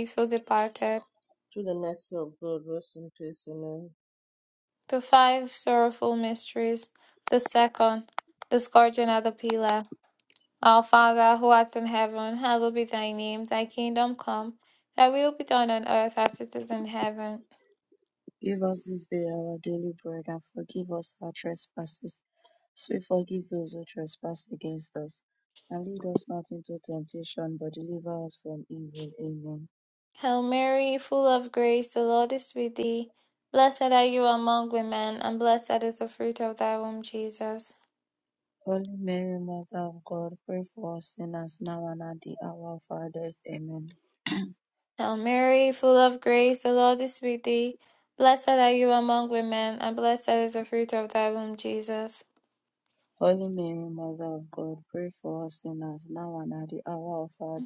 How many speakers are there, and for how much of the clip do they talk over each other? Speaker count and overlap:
three, no overlap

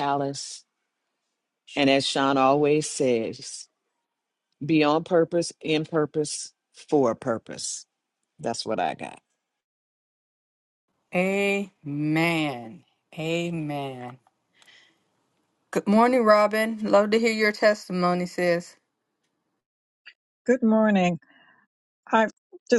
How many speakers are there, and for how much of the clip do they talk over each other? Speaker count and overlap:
three, no overlap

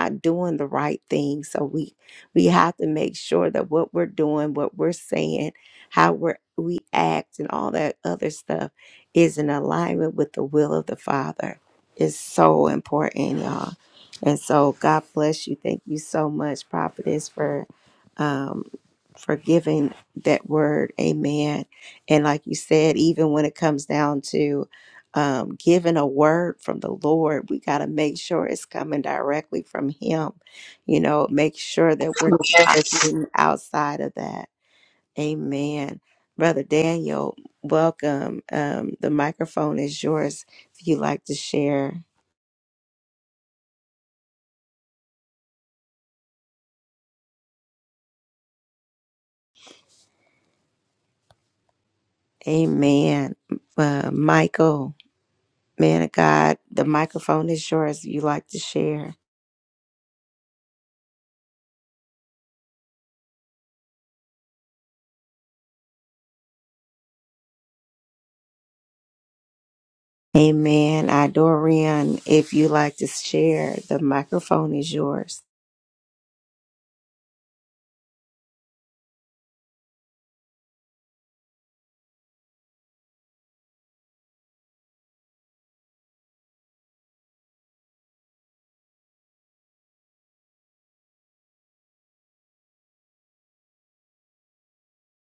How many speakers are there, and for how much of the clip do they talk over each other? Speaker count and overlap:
one, no overlap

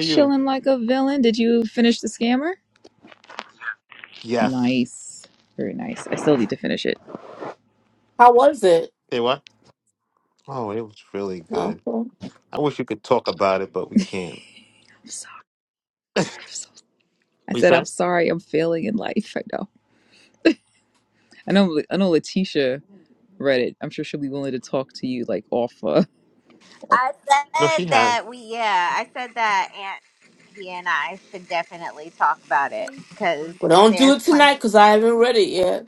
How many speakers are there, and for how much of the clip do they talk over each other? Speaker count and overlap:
four, about 7%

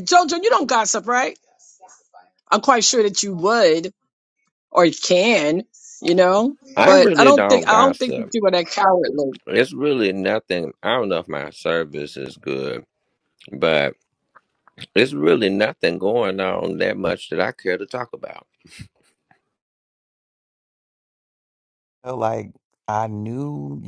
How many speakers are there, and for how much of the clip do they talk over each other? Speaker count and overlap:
three, about 6%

